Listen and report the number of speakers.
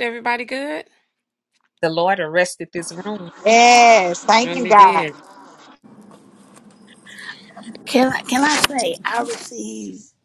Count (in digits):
4